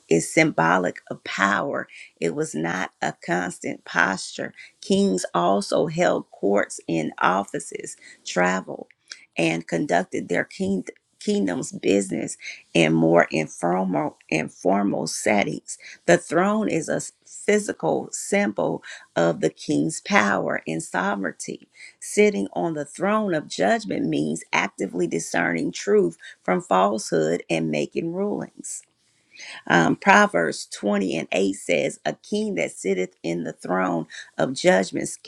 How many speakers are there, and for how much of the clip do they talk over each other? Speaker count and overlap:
1, no overlap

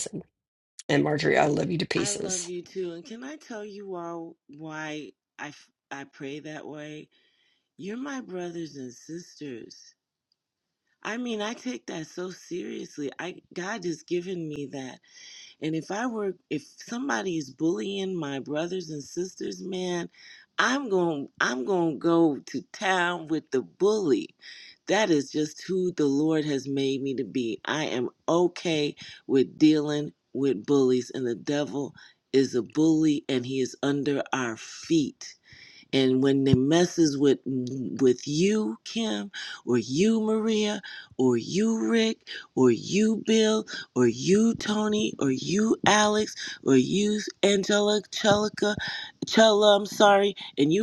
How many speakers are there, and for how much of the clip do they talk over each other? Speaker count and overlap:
2, about 1%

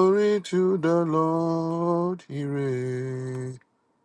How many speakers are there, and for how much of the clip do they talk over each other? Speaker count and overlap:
1, no overlap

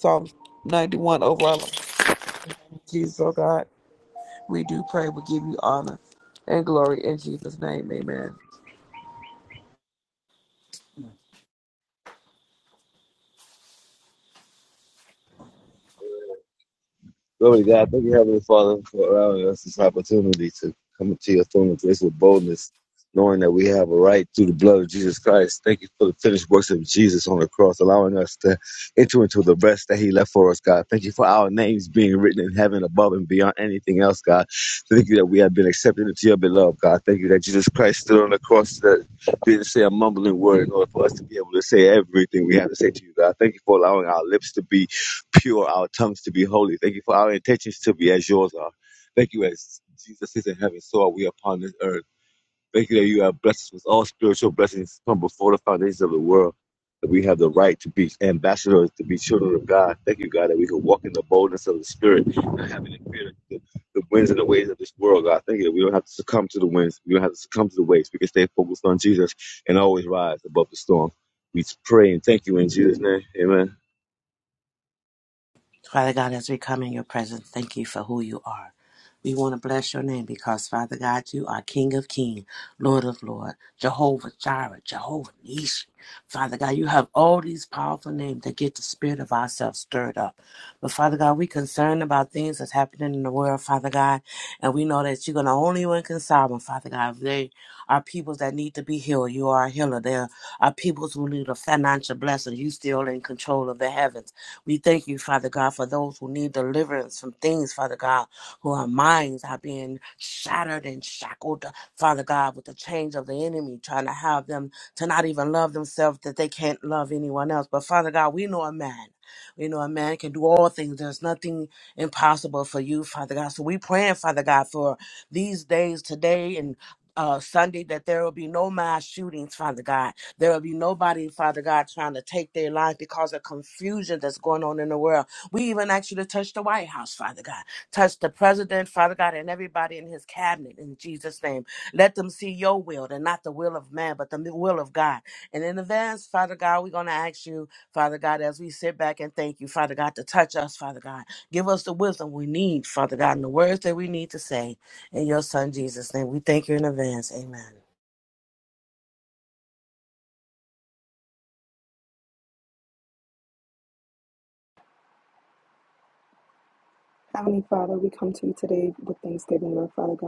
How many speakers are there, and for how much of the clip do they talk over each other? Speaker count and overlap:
4, no overlap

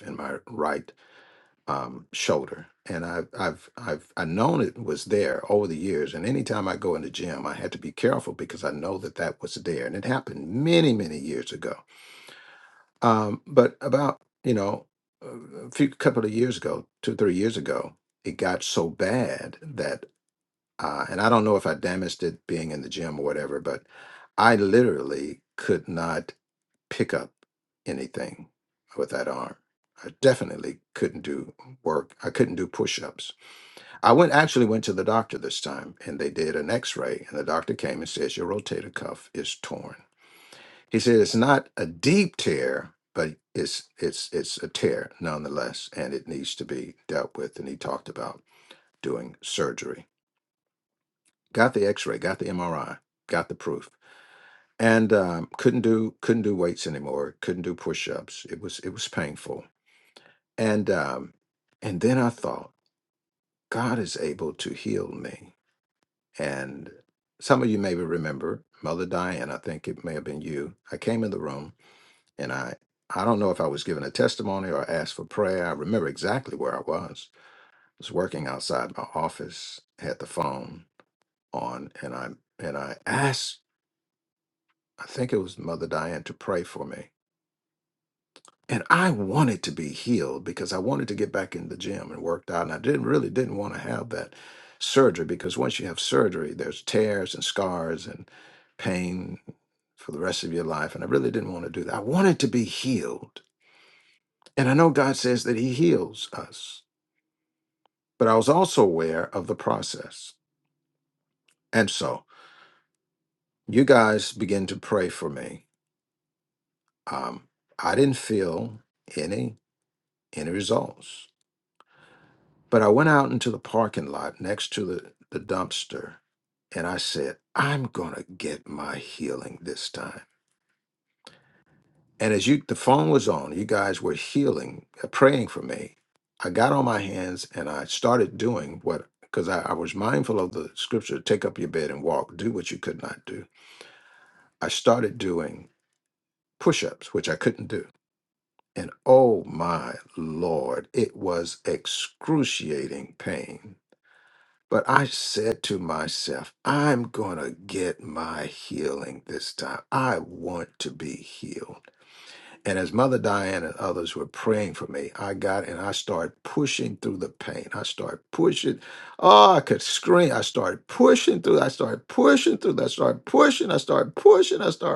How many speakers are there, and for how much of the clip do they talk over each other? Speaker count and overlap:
1, no overlap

